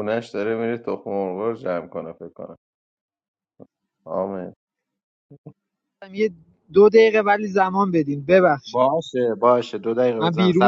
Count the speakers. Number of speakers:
three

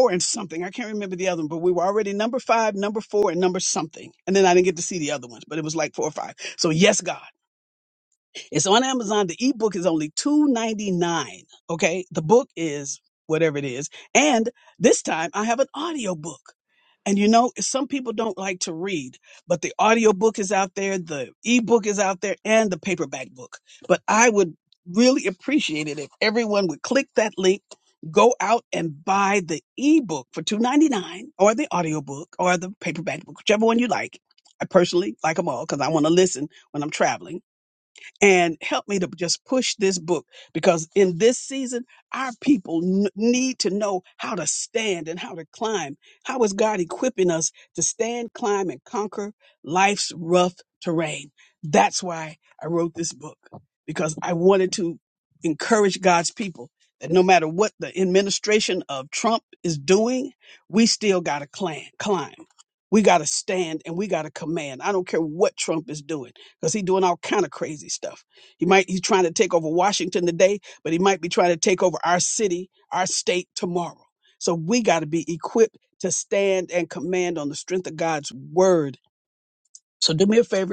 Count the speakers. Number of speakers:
one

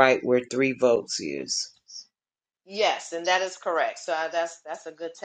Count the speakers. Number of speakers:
two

